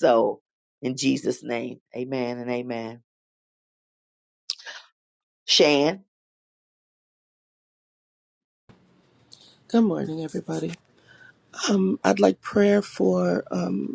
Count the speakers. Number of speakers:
2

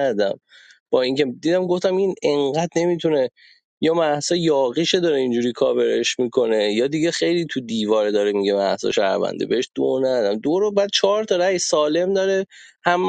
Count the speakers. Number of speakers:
1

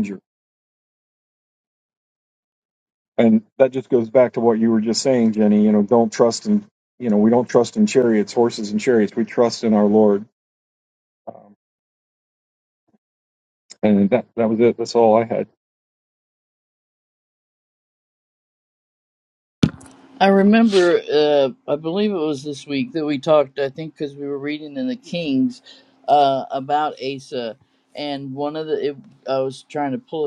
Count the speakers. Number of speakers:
2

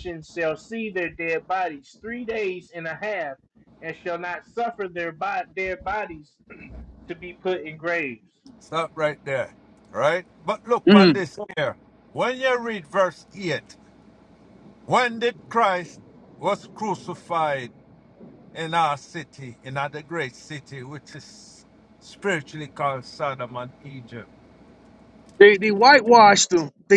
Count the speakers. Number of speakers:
3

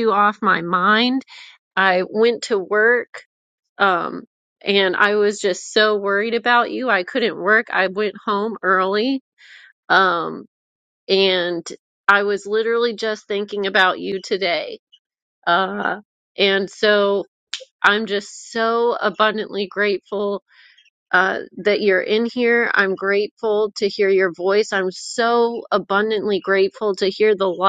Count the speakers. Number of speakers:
1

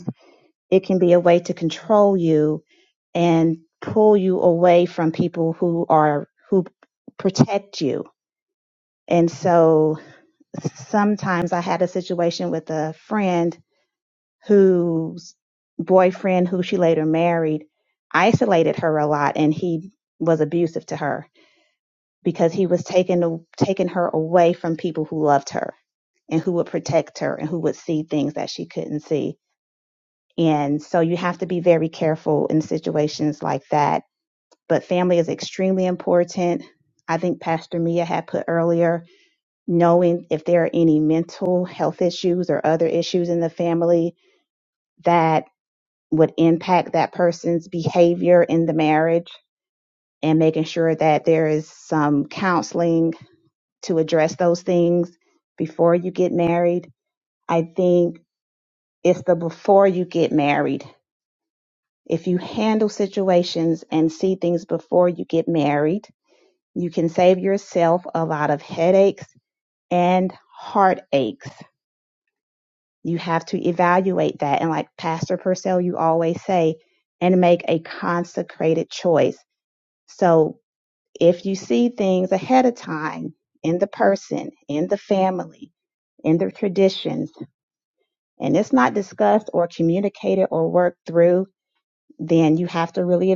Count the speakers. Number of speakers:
1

